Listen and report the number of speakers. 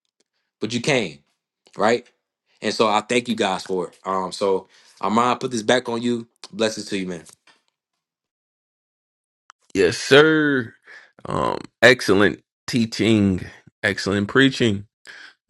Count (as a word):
two